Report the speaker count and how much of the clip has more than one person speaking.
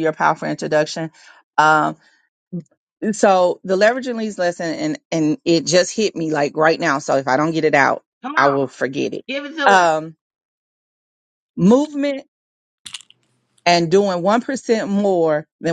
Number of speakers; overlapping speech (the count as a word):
two, about 4%